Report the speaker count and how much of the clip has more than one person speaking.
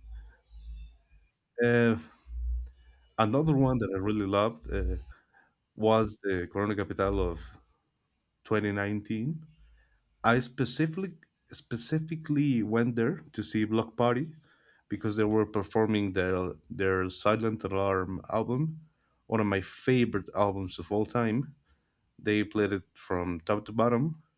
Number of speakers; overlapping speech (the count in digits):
1, no overlap